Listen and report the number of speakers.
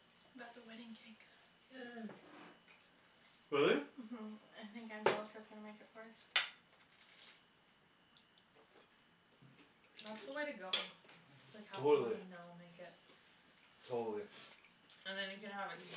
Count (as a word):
three